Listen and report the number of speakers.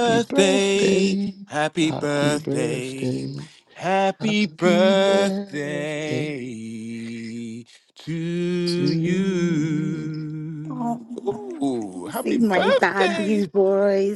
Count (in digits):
3